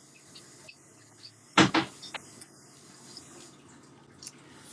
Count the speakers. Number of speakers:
0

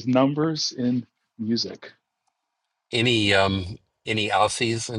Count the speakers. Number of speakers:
2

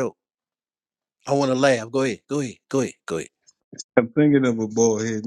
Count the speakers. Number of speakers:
2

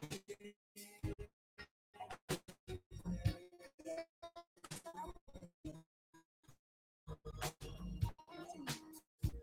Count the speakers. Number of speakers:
0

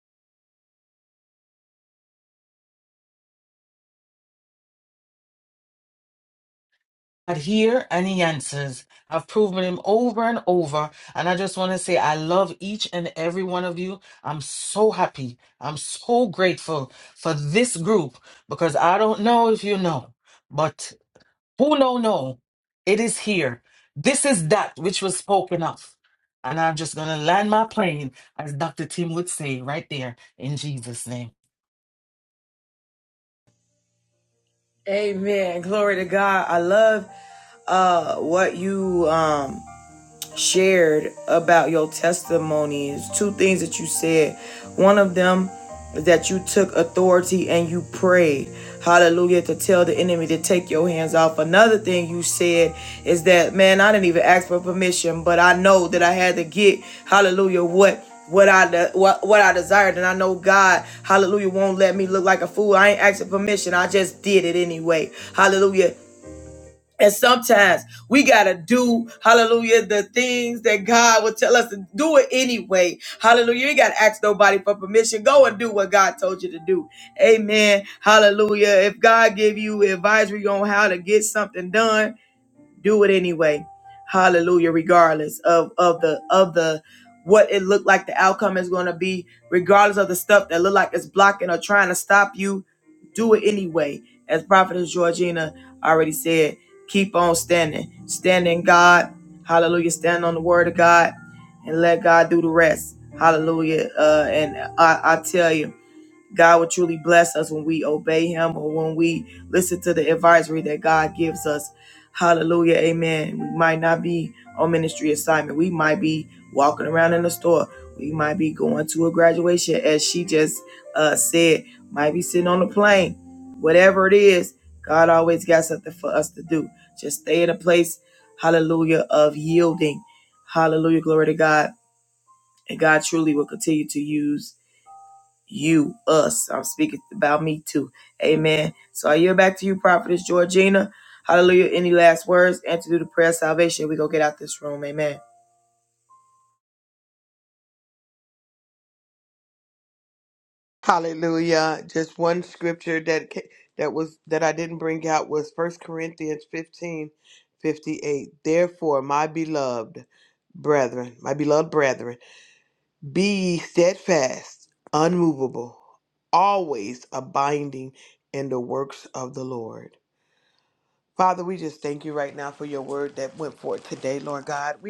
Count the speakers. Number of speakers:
3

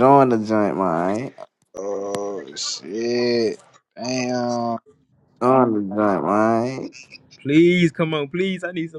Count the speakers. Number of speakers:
3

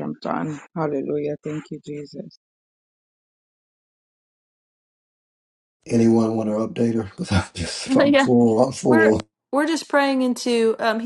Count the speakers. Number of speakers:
3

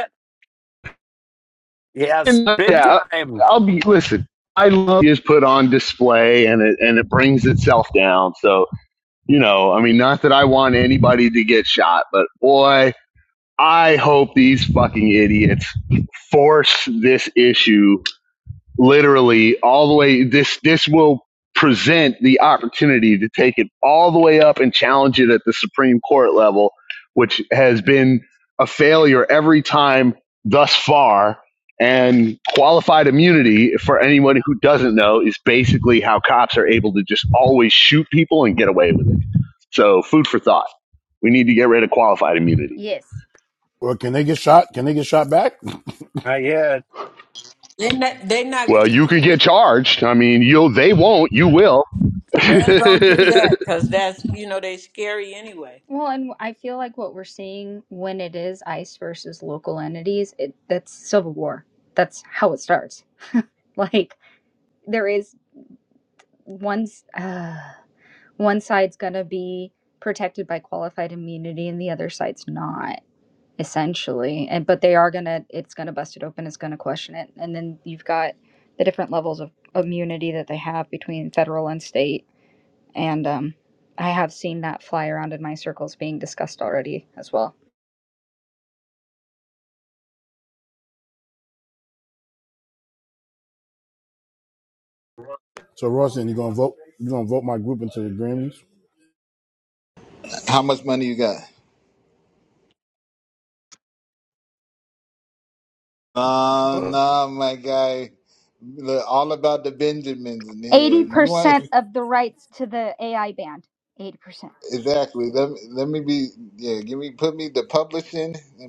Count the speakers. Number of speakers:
6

